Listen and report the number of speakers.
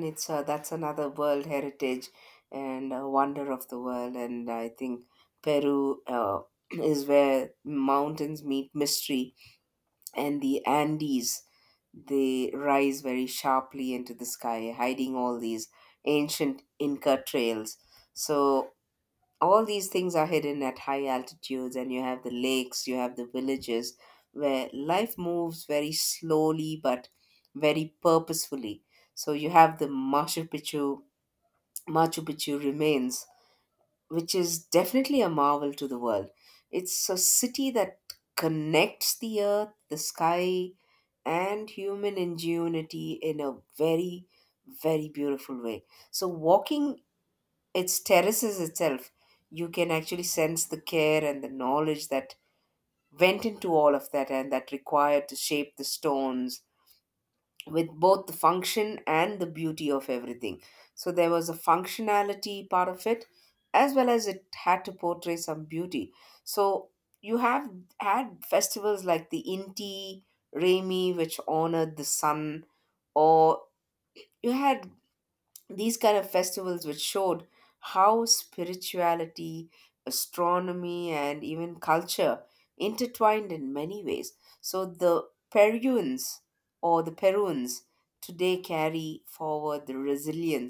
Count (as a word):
one